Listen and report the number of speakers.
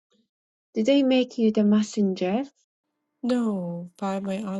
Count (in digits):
2